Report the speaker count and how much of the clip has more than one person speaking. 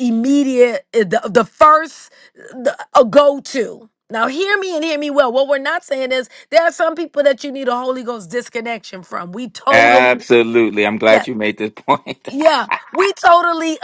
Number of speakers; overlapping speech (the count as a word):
two, about 5%